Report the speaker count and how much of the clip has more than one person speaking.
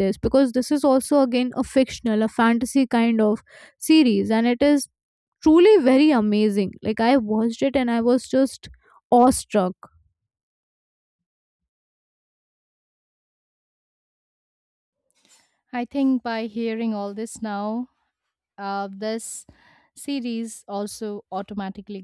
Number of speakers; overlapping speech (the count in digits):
2, no overlap